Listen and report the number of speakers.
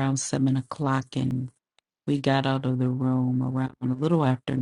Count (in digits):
1